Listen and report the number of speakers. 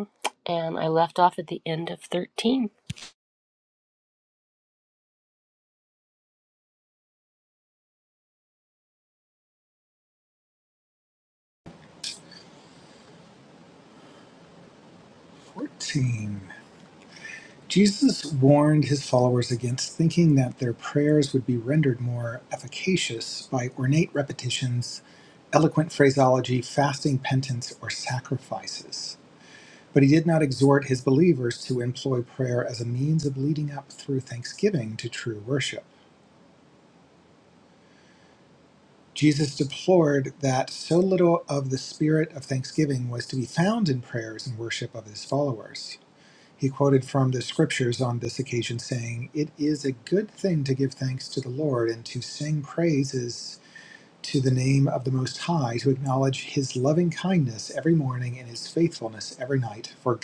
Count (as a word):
two